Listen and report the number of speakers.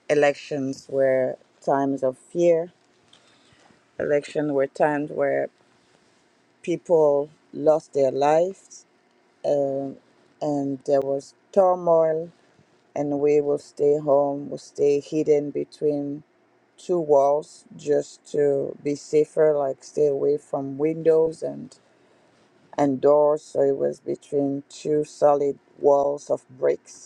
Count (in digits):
1